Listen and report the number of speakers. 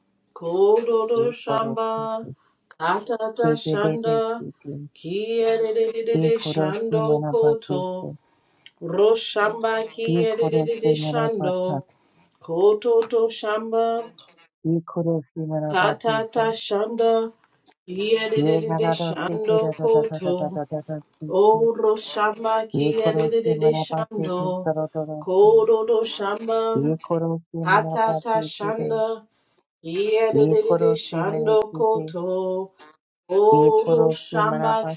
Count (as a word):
two